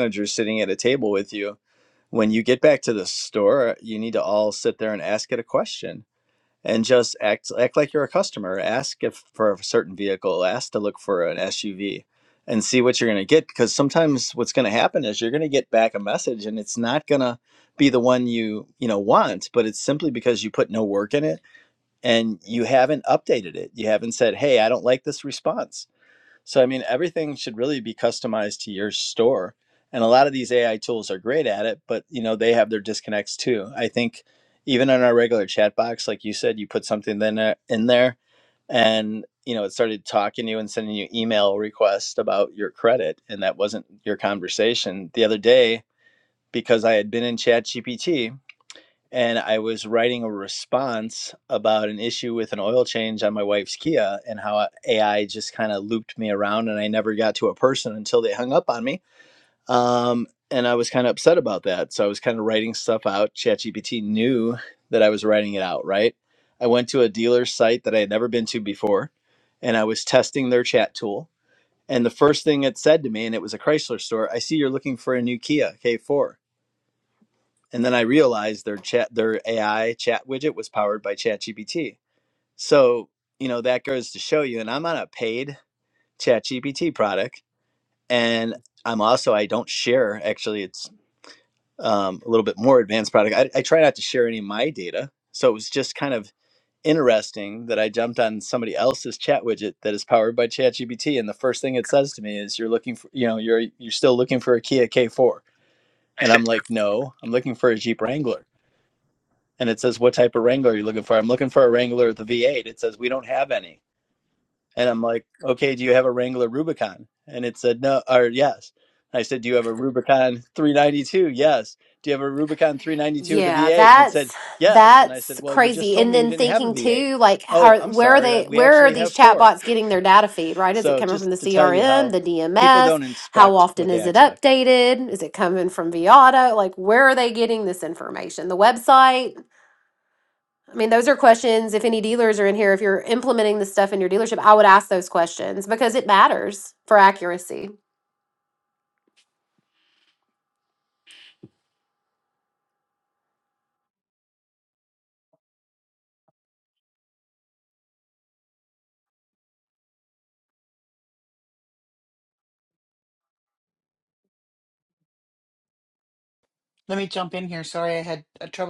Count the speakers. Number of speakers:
3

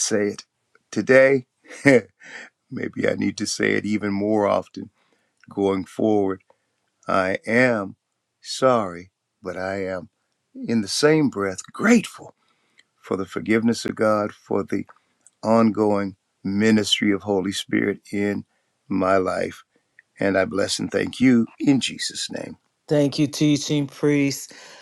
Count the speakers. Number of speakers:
2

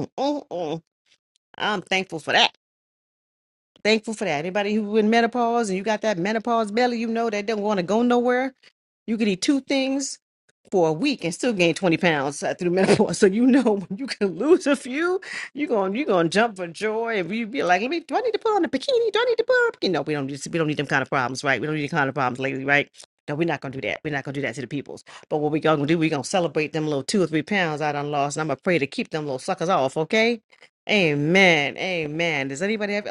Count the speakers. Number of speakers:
1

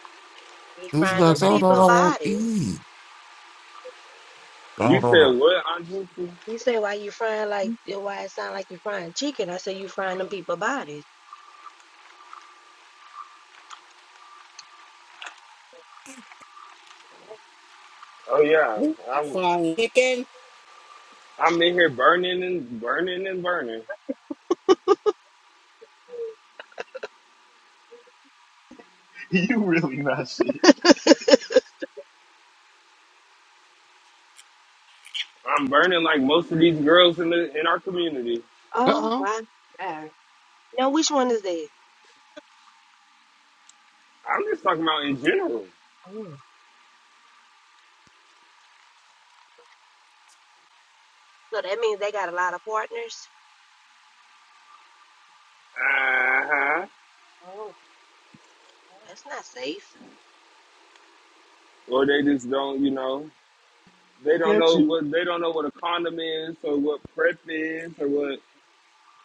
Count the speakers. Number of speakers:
5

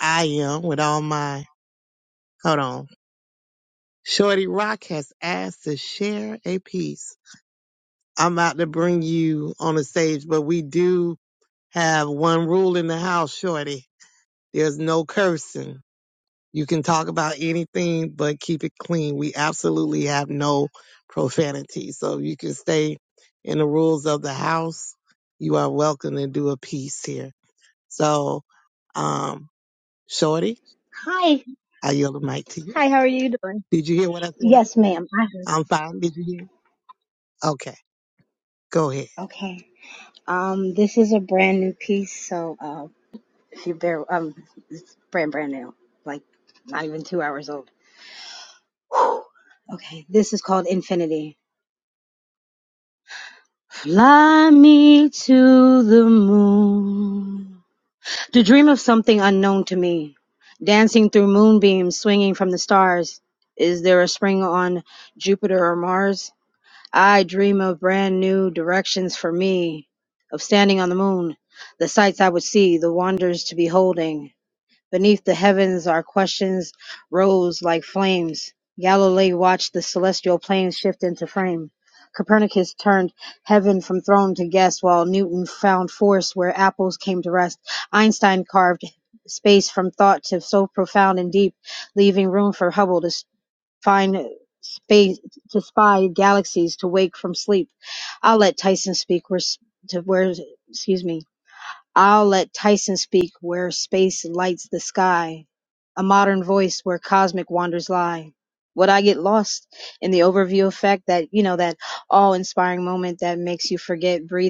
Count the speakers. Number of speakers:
2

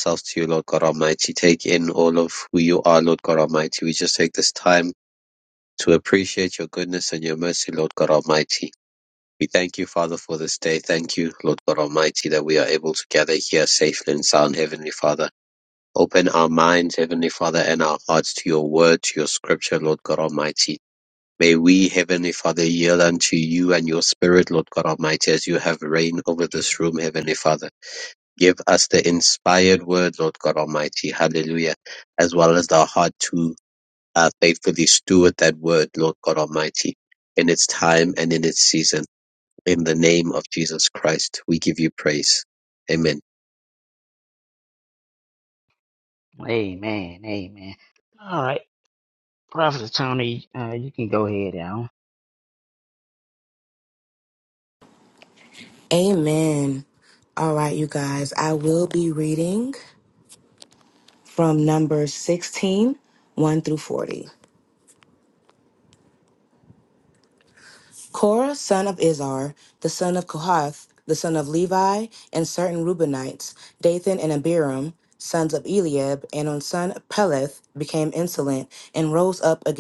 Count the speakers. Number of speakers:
3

